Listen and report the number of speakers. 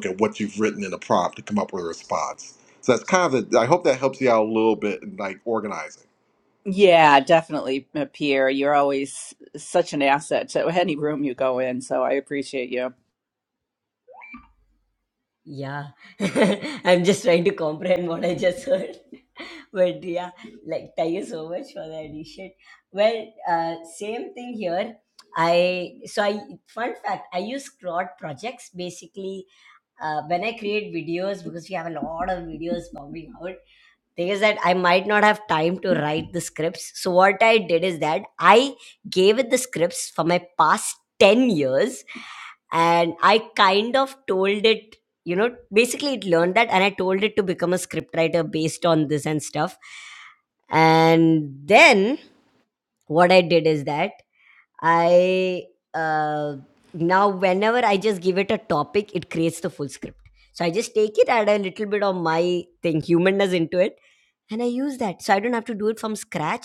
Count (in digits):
3